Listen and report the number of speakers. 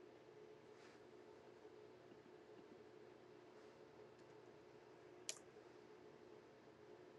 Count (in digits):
0